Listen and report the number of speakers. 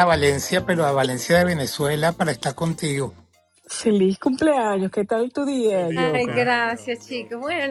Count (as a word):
three